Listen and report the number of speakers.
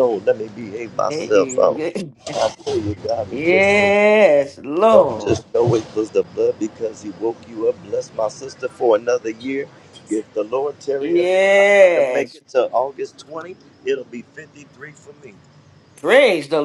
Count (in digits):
2